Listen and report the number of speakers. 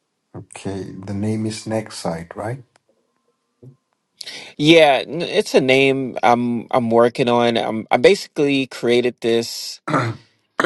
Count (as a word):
two